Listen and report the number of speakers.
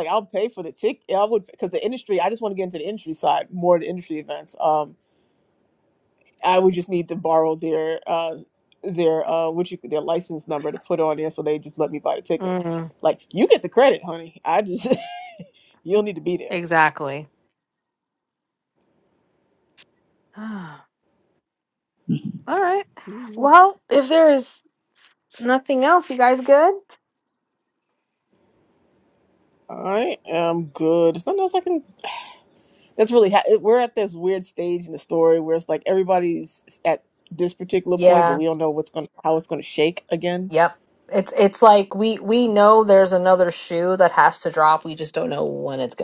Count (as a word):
two